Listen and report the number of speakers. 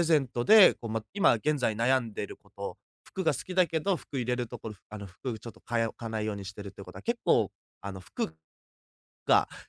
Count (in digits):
1